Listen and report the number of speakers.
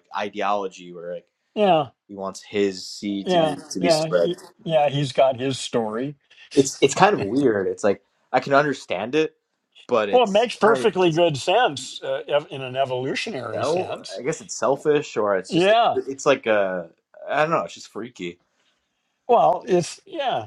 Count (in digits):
2